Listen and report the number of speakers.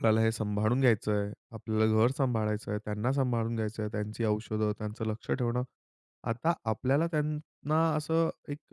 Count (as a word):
one